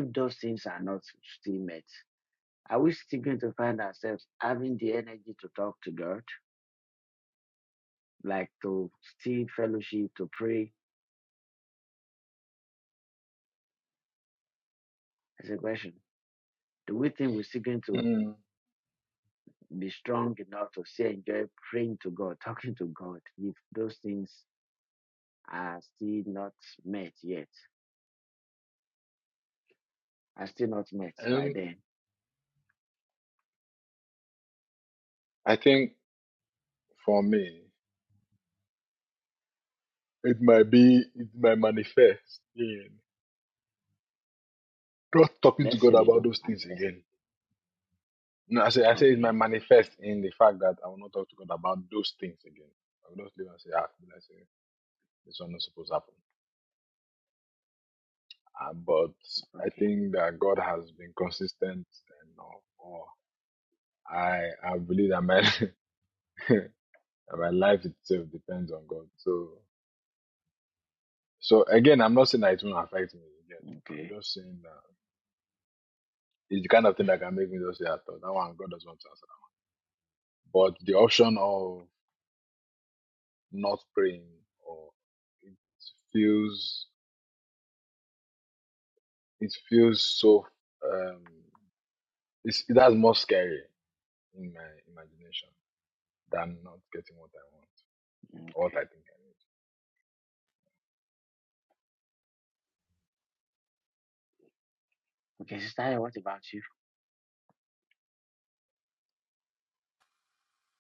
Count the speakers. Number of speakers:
2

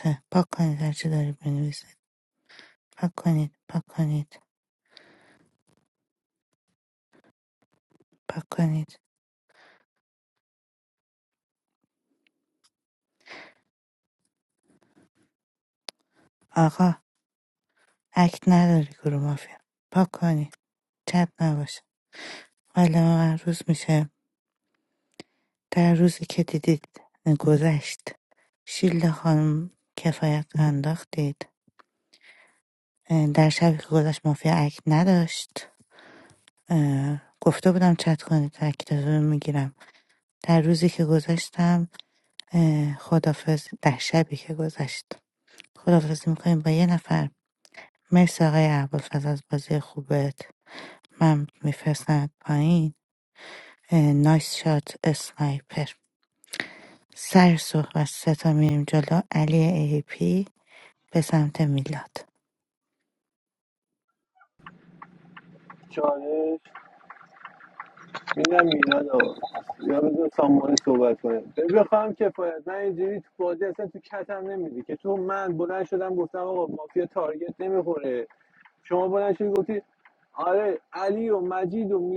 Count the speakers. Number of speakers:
2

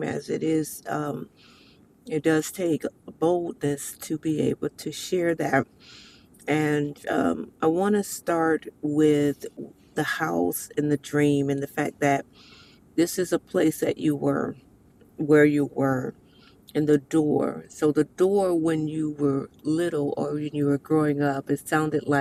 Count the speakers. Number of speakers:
1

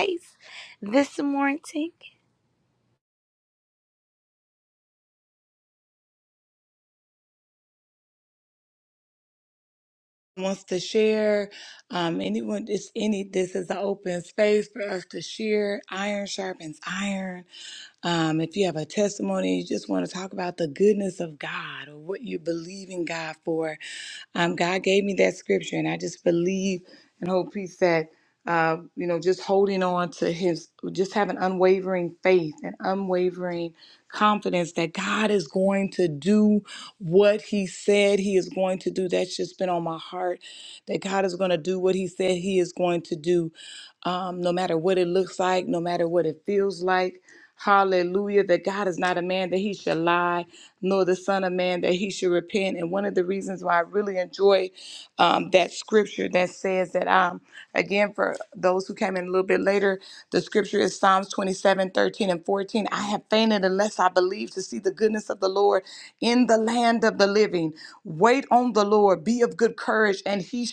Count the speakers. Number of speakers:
2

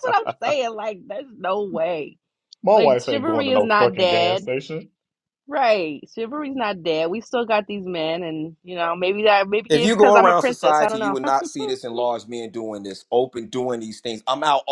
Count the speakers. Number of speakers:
3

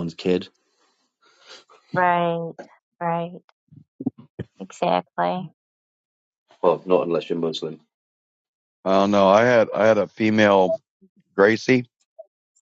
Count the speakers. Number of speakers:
3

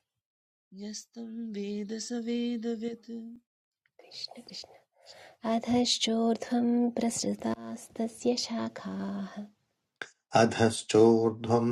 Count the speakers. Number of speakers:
3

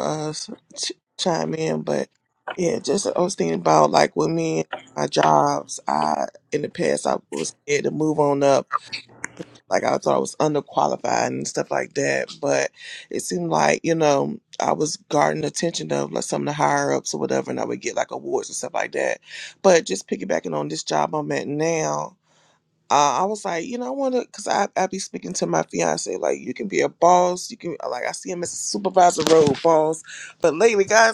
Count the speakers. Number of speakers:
1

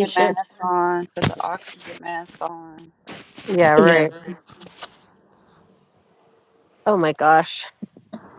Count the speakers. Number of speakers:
2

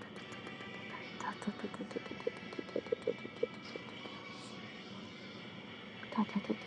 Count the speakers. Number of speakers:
0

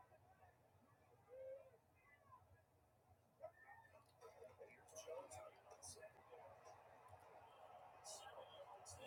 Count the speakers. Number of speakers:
0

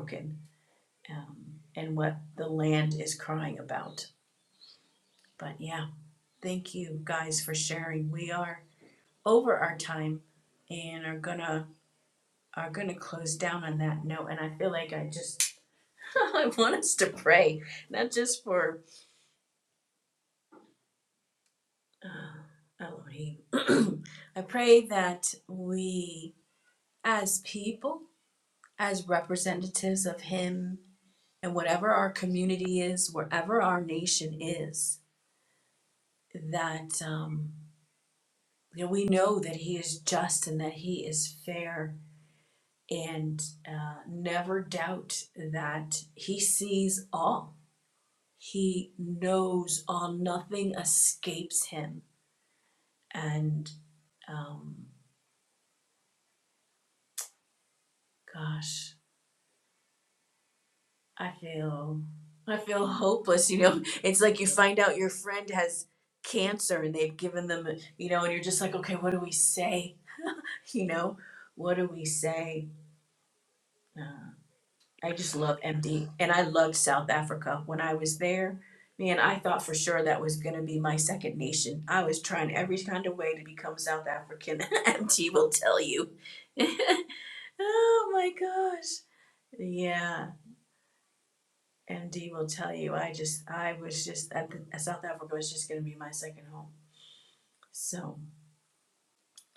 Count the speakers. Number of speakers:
1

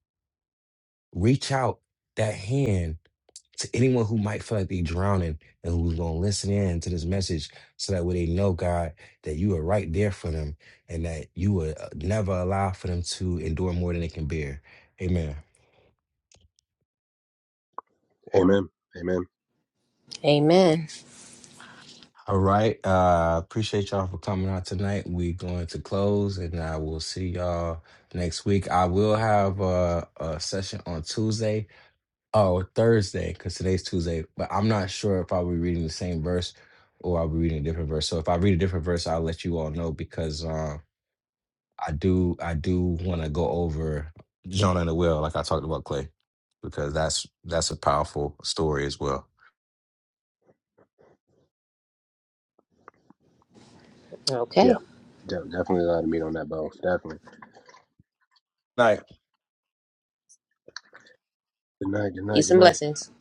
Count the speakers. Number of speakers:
3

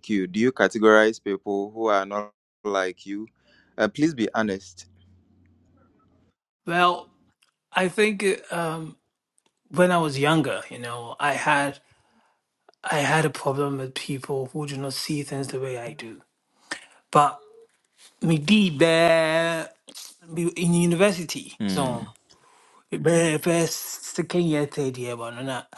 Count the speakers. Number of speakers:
2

